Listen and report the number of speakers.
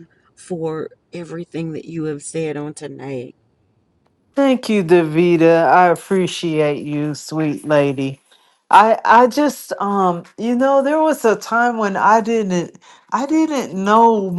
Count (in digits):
2